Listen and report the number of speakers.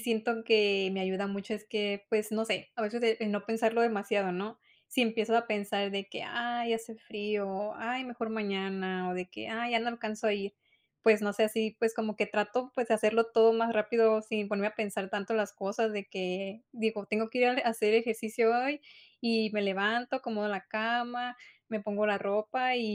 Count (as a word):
one